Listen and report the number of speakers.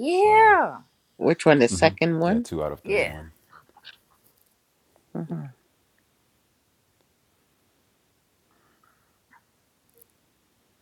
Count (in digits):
3